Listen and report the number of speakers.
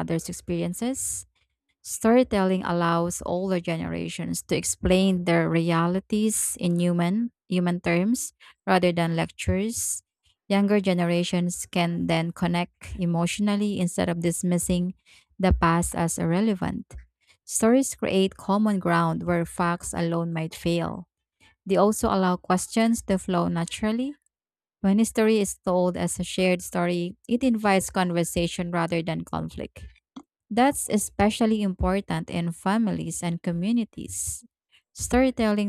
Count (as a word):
one